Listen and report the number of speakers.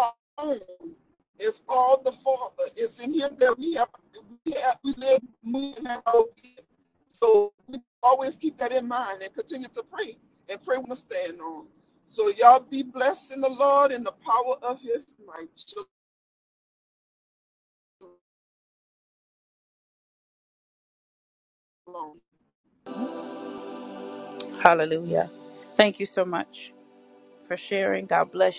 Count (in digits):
2